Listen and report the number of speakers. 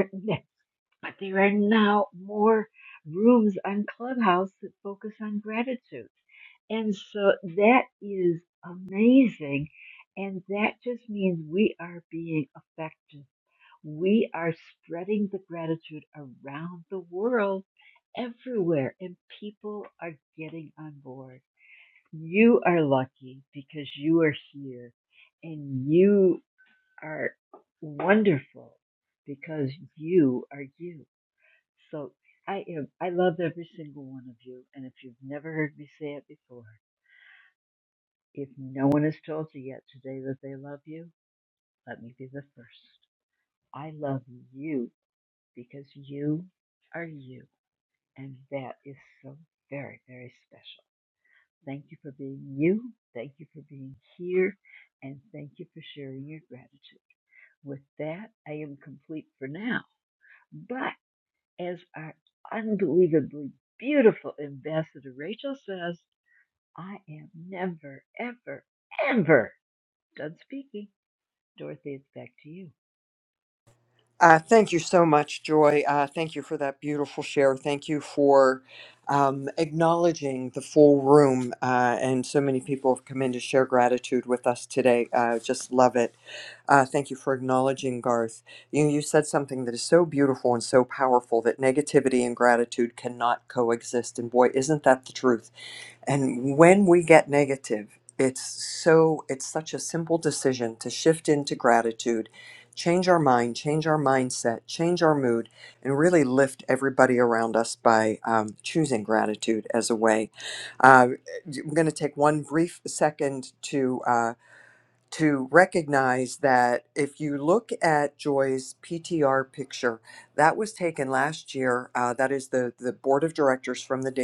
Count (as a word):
two